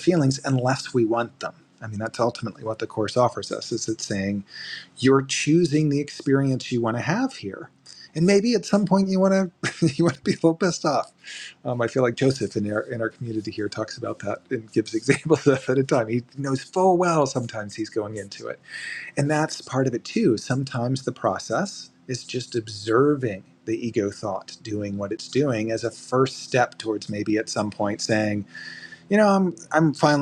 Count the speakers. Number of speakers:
one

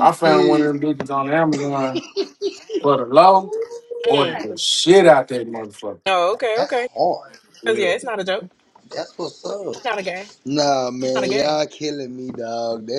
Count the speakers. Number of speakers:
three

